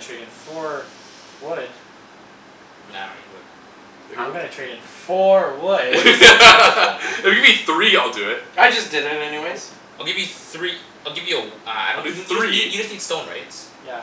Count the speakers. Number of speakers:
4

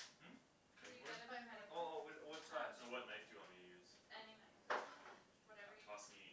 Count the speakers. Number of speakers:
3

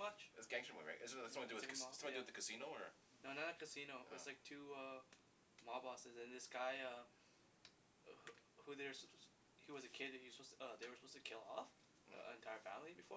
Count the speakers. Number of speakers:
2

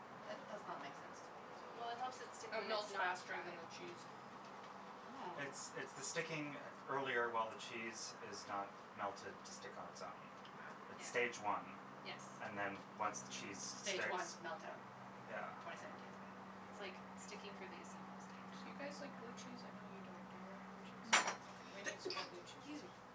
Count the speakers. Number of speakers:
4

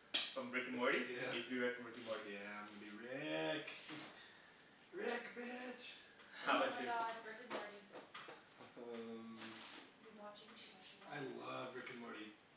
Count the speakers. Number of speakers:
4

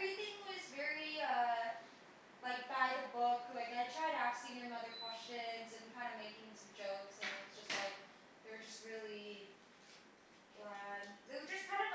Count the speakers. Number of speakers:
1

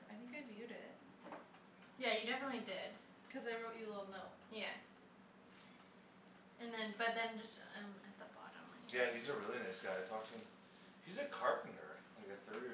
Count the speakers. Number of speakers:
3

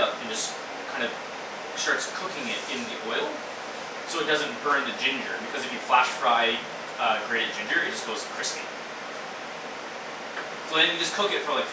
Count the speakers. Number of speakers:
1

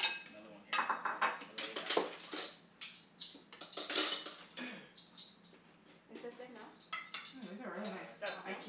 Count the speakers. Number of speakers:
3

